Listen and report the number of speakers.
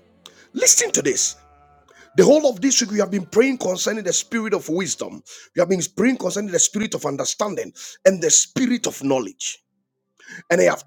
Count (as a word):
one